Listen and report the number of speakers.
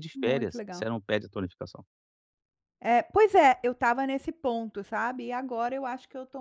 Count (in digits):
2